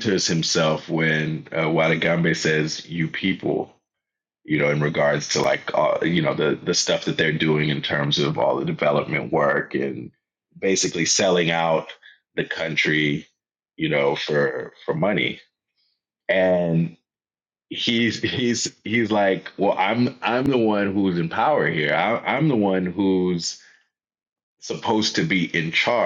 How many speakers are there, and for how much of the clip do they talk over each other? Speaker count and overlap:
1, no overlap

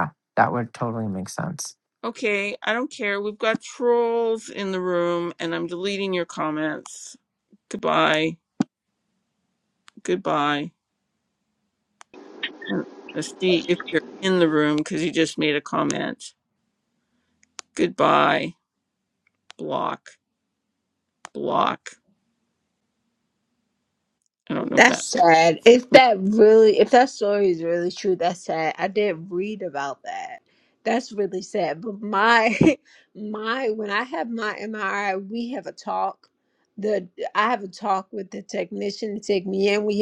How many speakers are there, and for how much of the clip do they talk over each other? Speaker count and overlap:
3, about 1%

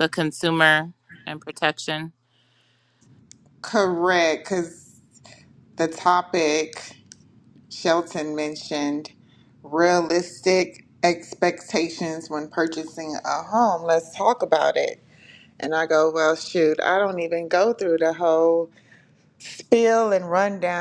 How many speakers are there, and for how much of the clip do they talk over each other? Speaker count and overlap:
2, no overlap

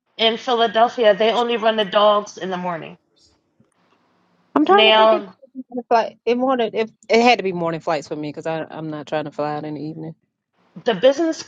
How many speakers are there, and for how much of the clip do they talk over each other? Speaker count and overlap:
2, about 5%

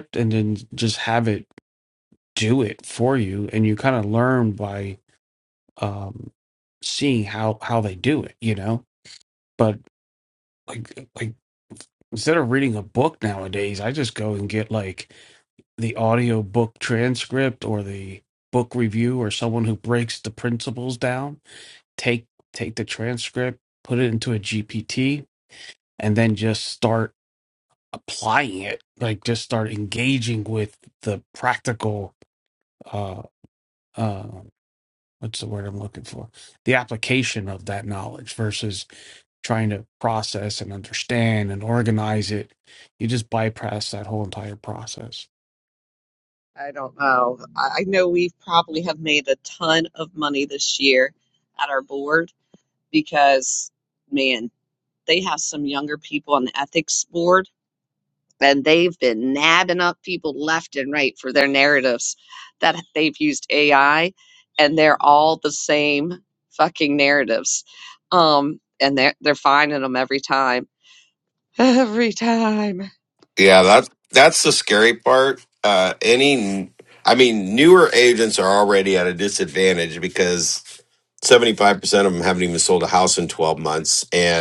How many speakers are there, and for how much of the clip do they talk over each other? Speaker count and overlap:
3, no overlap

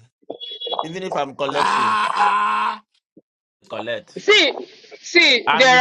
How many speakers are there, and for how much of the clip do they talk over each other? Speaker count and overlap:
3, about 13%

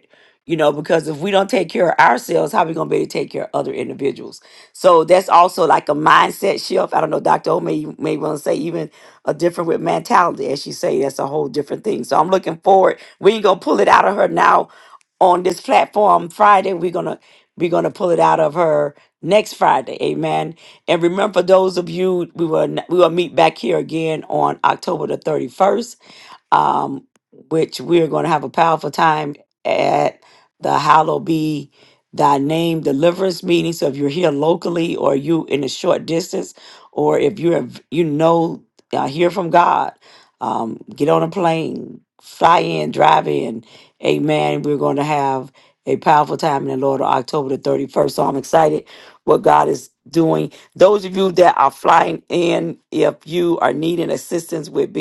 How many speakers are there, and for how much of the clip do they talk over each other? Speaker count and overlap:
1, no overlap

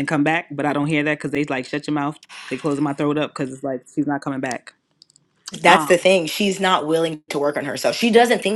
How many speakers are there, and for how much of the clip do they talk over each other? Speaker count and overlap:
2, about 4%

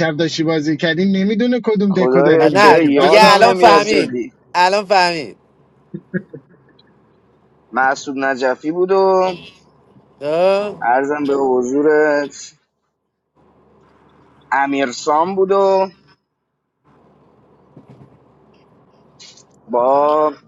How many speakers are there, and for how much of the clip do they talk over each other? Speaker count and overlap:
3, about 11%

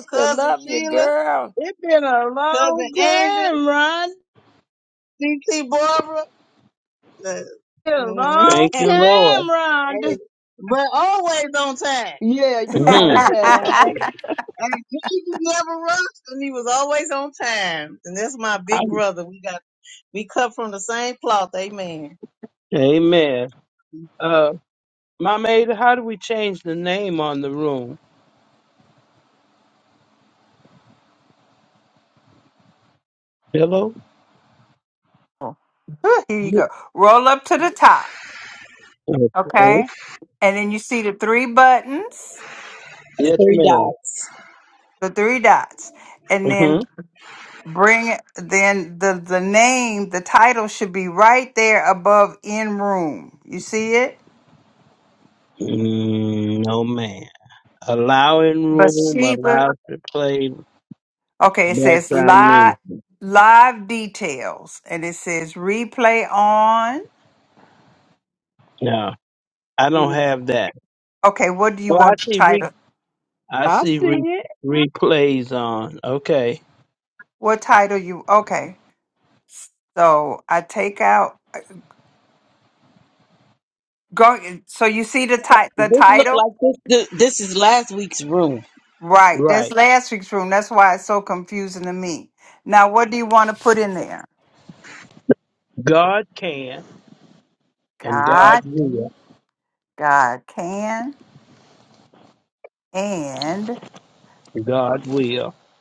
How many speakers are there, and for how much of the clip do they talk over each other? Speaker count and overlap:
6, about 10%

